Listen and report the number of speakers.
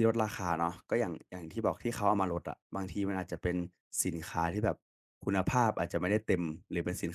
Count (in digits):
1